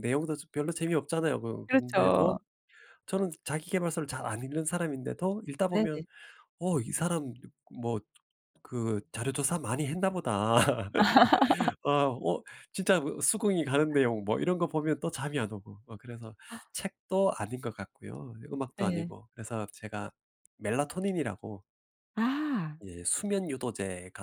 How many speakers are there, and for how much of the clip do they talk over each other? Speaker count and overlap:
two, about 5%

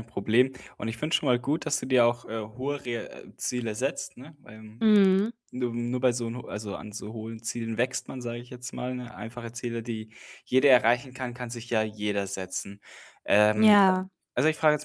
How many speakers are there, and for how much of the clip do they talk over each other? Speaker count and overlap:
two, about 3%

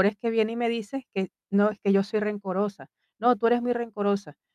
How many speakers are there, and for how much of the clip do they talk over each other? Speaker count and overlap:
one, no overlap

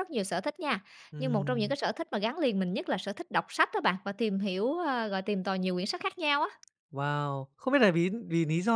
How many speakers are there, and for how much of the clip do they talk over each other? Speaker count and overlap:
two, about 5%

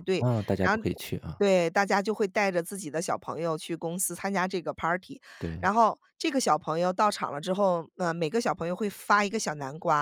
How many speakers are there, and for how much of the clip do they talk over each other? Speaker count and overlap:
two, about 3%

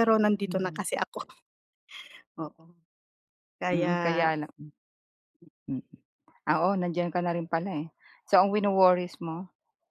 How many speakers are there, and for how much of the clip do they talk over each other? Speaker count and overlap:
two, about 6%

